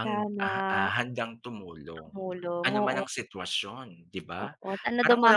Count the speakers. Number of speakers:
two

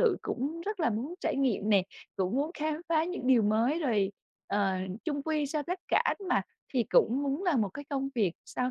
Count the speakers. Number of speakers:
one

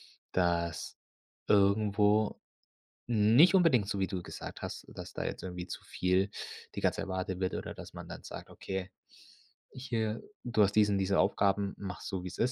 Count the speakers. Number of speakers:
one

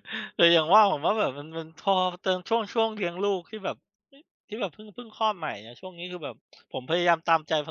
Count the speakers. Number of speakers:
one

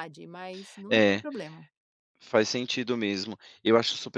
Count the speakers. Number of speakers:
two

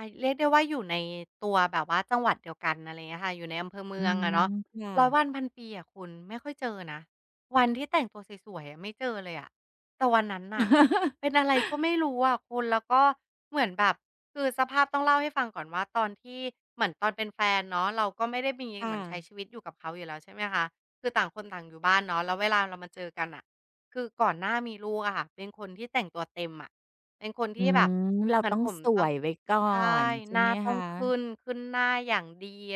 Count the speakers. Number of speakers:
two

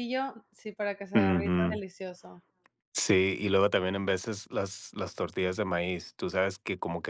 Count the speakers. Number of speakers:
two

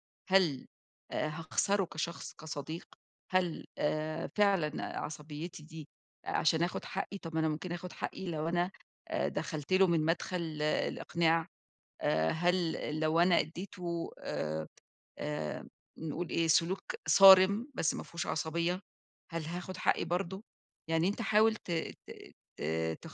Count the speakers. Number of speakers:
one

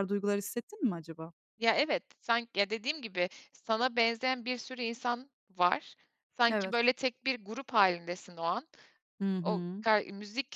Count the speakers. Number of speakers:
two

